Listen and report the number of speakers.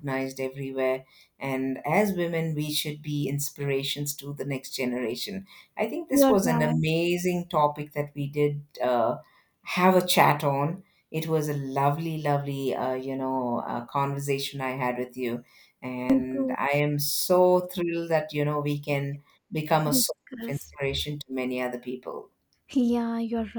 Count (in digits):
2